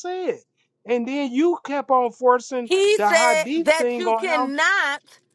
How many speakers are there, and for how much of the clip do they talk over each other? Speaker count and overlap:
two, about 33%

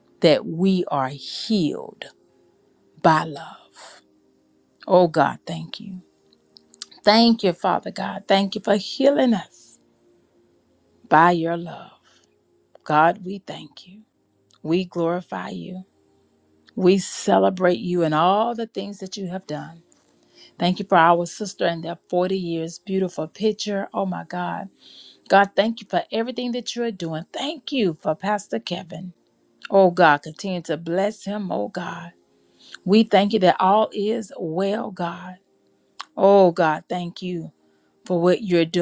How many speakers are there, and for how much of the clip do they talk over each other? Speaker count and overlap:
one, no overlap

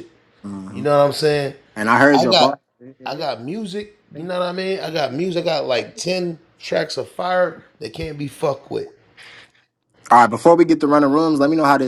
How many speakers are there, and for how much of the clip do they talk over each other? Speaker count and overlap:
two, about 4%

